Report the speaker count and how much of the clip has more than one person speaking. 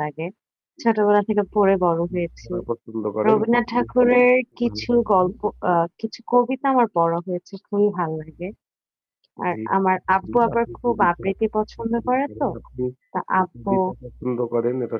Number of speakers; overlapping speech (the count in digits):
2, about 10%